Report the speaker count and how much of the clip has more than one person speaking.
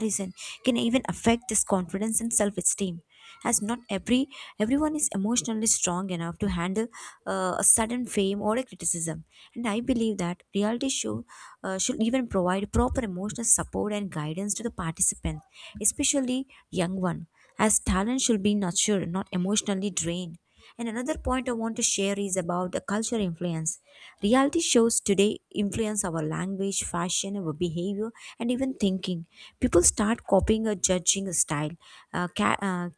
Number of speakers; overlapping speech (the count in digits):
1, no overlap